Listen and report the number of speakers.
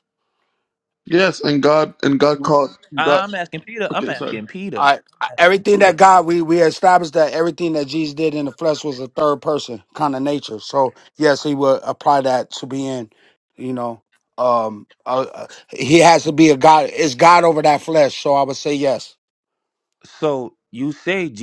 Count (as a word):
three